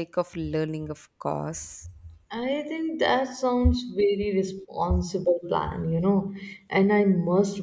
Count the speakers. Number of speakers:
2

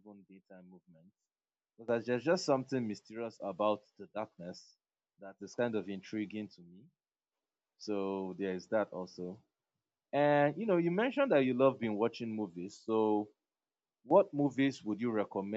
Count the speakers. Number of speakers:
1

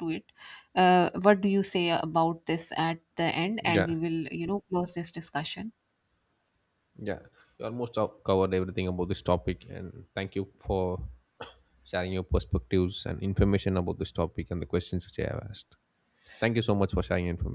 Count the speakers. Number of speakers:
2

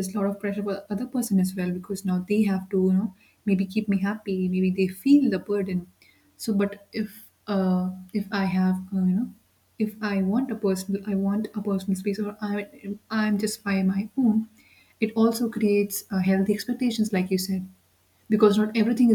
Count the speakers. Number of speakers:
1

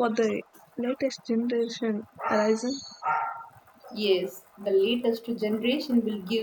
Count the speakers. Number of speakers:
2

